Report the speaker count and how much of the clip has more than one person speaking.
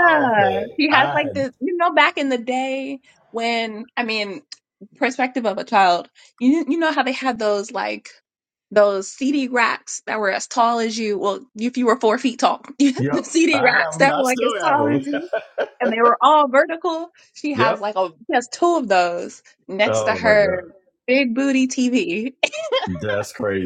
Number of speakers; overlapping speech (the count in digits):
2, about 21%